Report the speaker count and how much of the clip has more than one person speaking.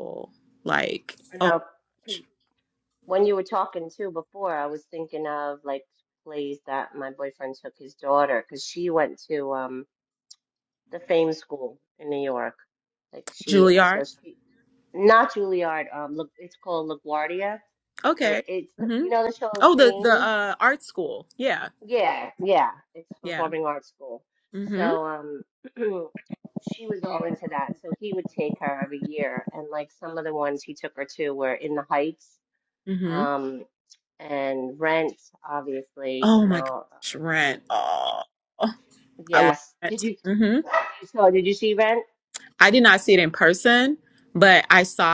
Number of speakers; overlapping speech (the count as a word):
two, about 9%